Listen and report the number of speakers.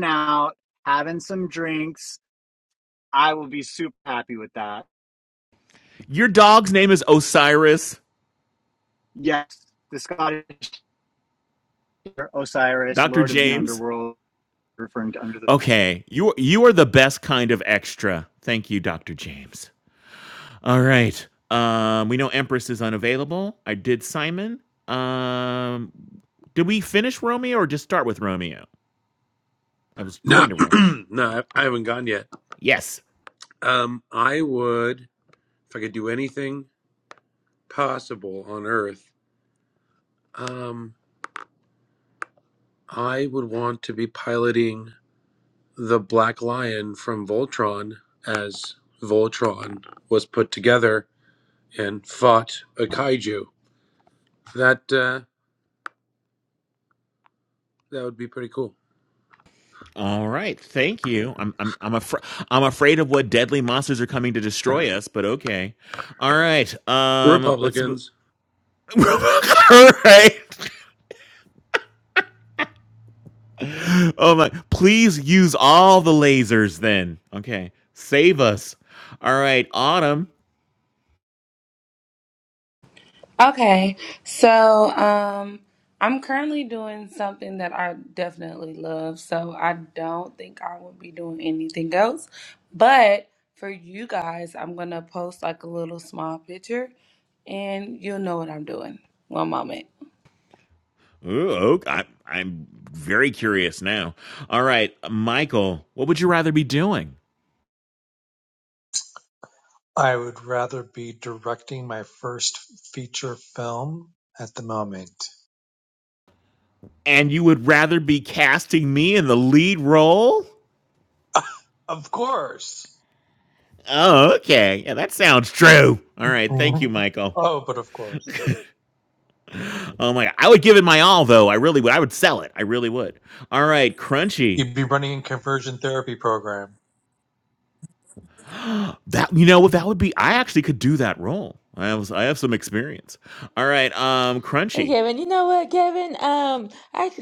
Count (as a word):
six